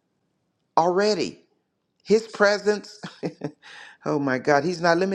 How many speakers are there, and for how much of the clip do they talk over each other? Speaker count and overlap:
1, no overlap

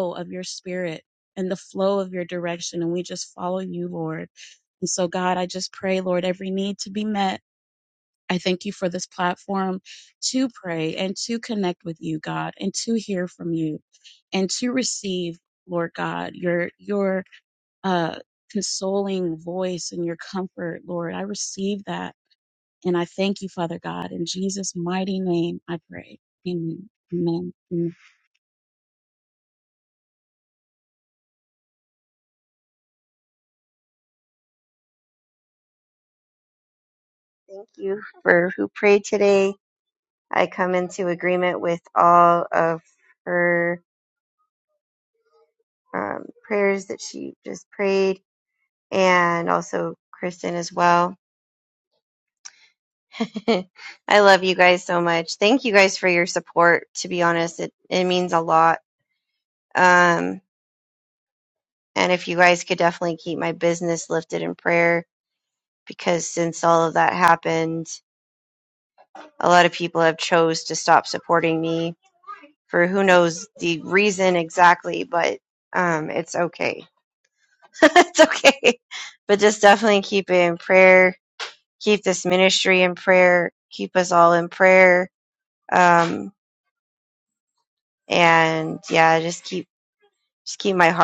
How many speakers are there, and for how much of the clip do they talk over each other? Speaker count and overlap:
2, no overlap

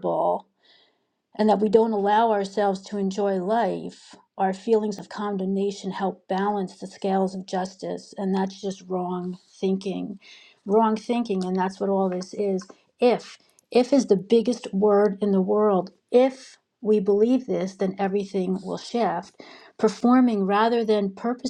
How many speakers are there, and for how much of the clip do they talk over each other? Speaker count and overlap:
1, no overlap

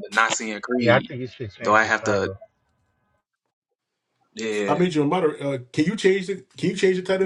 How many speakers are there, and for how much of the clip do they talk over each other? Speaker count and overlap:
3, about 15%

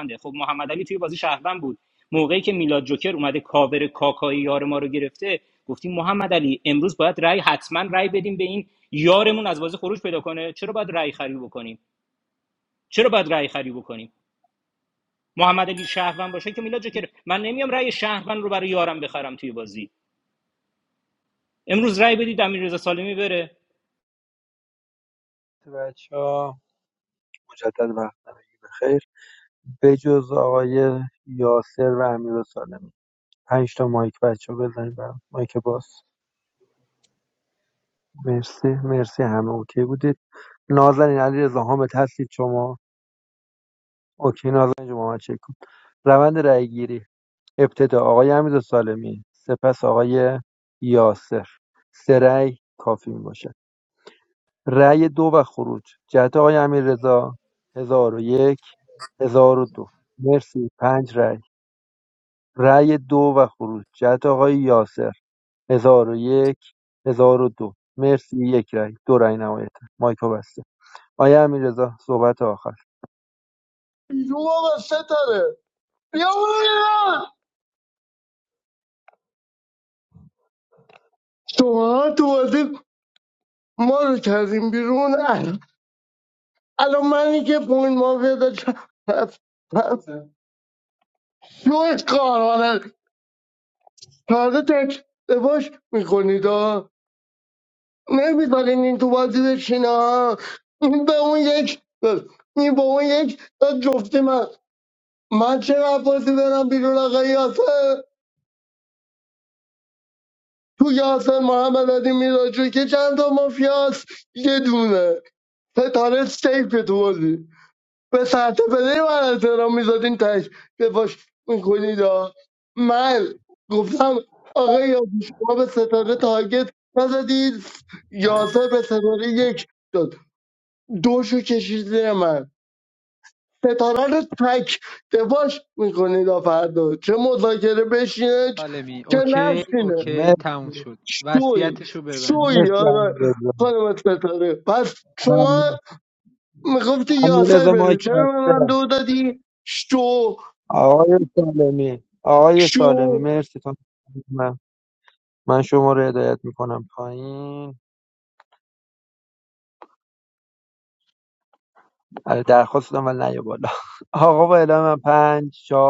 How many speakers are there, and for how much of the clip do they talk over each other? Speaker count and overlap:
4, about 4%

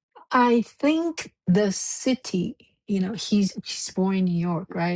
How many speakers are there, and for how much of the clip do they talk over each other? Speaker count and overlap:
1, no overlap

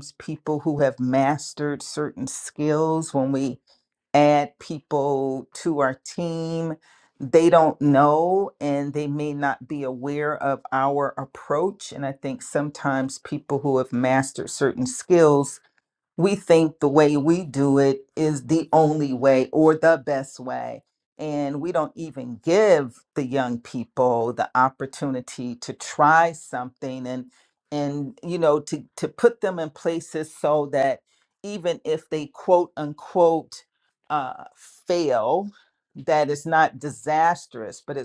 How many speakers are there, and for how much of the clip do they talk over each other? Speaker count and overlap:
1, no overlap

